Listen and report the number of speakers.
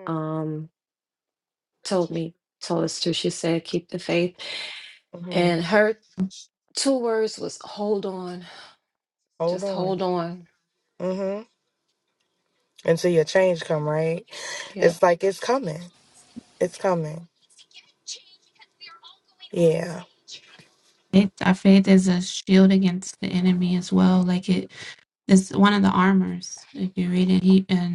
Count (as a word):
three